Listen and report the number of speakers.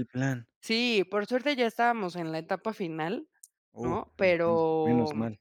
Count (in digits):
2